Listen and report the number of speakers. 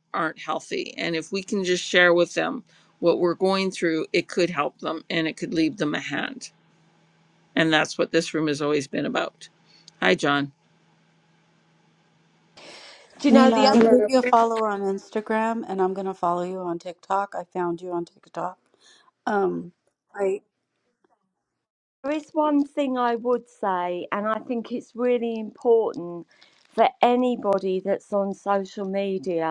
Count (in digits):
3